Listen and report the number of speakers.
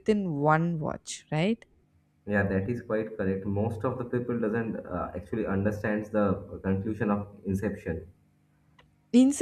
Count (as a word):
two